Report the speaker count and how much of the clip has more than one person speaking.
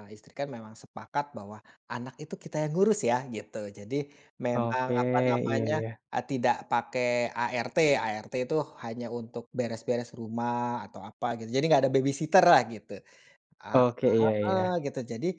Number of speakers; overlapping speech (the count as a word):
two, about 8%